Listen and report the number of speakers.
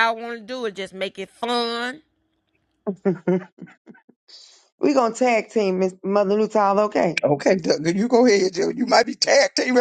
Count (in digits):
3